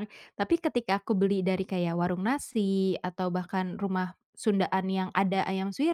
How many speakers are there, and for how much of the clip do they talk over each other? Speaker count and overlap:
1, no overlap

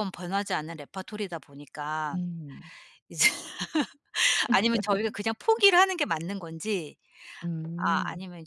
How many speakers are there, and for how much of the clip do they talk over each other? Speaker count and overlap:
2, about 5%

